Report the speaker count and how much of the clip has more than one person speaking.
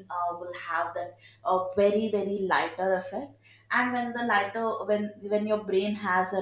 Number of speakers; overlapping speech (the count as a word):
one, no overlap